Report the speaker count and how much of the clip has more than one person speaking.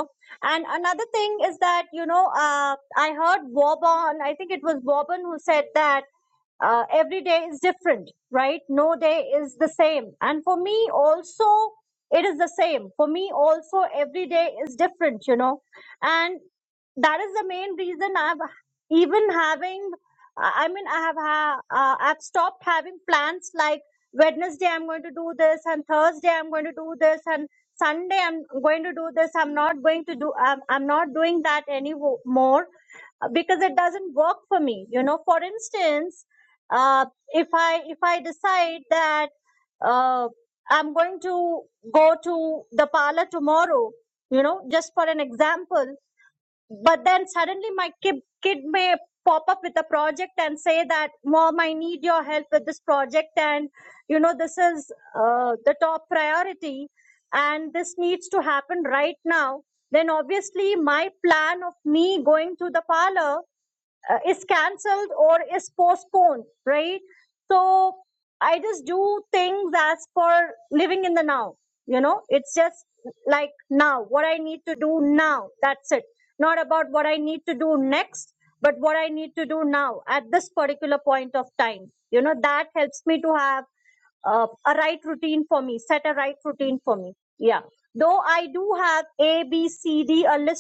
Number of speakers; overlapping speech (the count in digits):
1, no overlap